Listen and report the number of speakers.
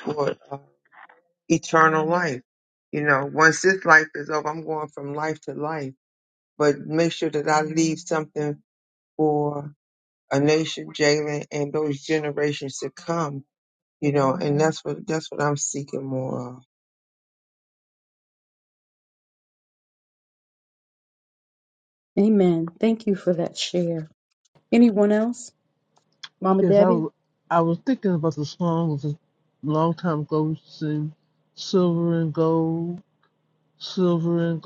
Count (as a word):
three